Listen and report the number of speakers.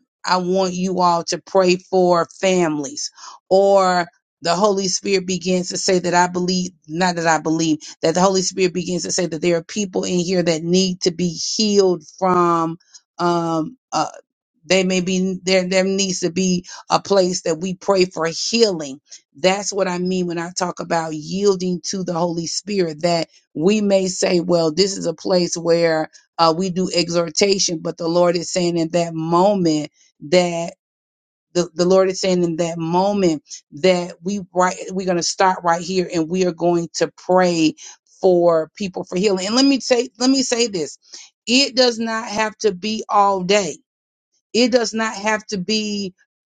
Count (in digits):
1